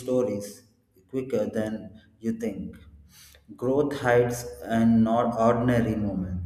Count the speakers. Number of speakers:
one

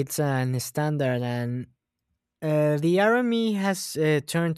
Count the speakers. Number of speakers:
one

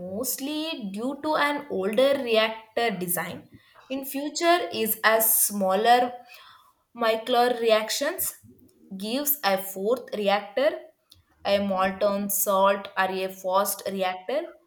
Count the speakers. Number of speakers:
one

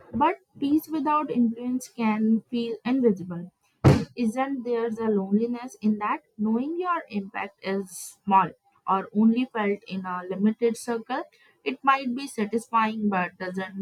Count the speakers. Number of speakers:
one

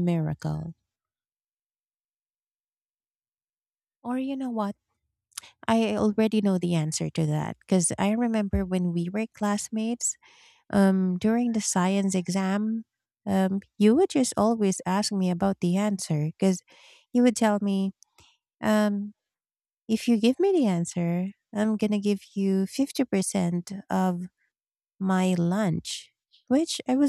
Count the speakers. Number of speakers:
one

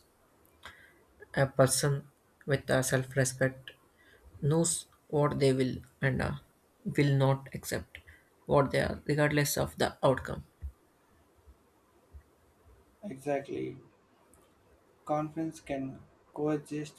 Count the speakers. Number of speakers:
two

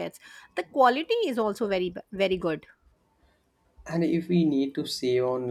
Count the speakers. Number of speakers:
two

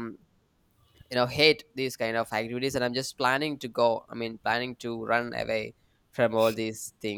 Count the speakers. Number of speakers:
one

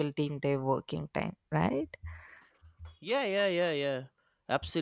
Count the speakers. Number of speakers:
two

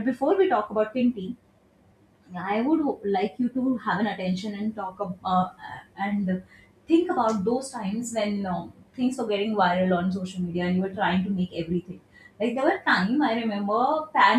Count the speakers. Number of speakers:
one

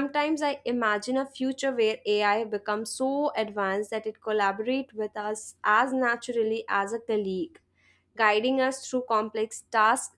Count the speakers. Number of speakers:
one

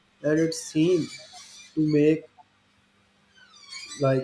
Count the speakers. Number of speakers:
one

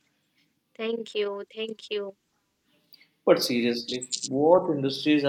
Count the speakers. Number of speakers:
two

